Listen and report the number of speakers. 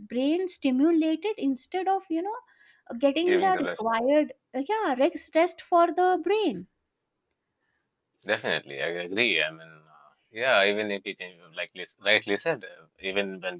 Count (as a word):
two